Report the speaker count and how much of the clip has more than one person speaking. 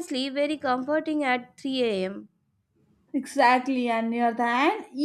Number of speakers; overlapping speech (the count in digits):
2, no overlap